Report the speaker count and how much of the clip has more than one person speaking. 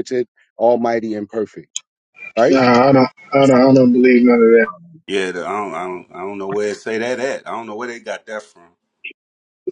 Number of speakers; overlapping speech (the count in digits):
3, about 1%